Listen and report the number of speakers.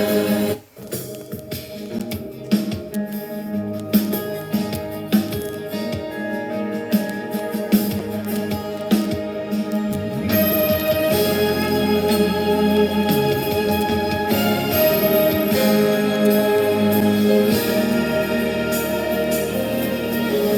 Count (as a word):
zero